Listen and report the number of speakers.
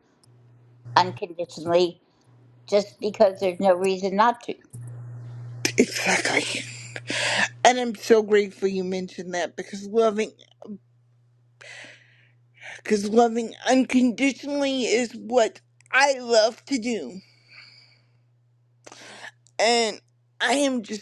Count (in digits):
2